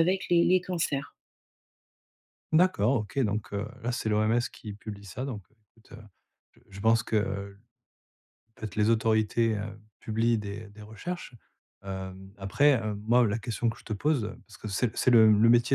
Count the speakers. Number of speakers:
two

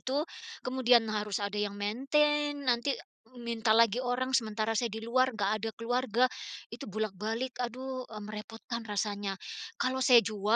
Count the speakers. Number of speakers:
one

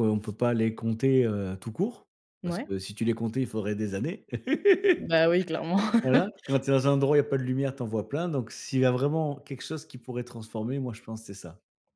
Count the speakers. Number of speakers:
two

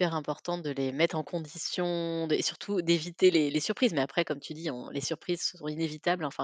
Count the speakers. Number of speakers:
one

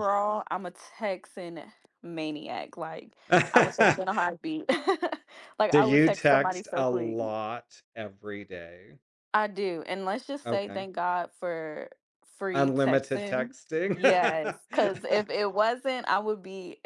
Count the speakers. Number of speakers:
two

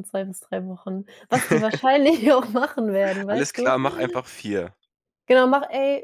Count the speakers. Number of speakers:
two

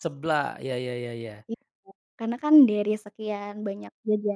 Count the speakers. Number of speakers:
two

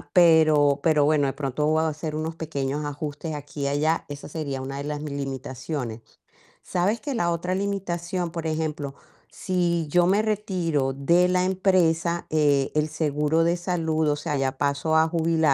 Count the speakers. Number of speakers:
one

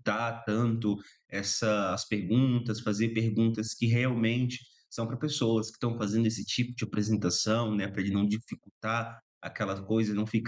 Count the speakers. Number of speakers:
one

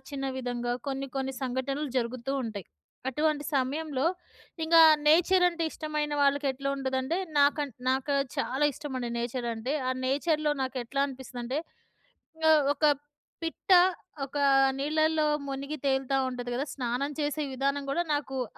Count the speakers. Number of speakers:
one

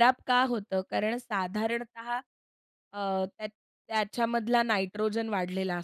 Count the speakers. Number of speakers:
one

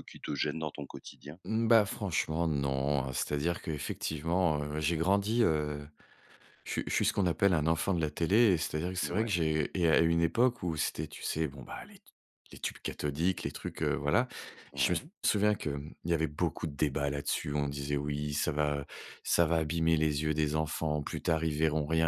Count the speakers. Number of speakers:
two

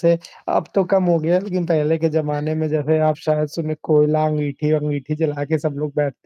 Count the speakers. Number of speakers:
one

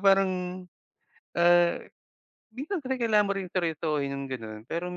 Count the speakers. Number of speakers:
one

